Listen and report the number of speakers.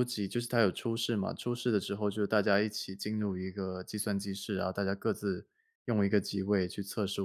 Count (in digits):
1